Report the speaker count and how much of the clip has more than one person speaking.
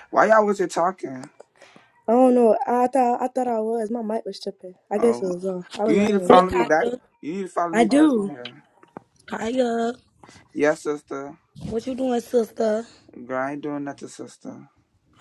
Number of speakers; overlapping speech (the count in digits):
3, about 13%